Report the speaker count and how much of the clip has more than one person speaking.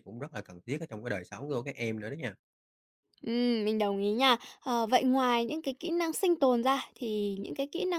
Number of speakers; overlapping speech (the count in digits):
2, no overlap